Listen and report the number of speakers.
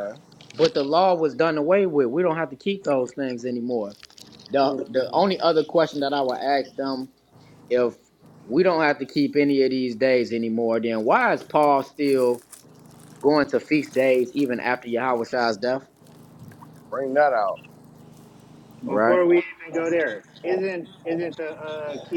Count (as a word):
three